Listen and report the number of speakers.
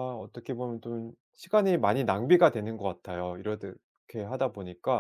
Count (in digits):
1